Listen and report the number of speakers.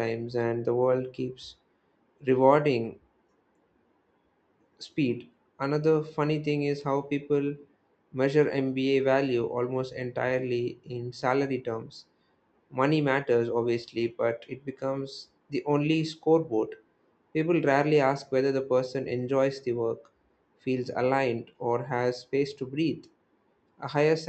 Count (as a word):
one